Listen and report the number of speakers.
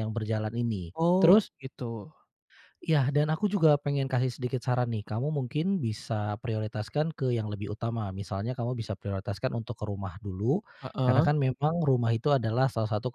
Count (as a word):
two